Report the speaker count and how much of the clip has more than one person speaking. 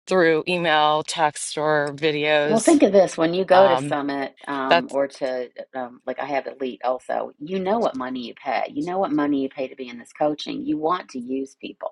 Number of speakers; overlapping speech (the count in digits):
2, about 5%